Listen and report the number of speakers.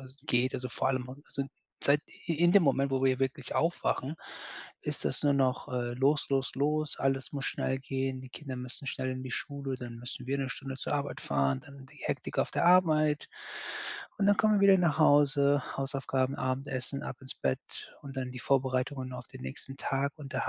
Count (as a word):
one